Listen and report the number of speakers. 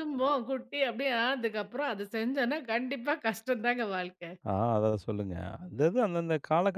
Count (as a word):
two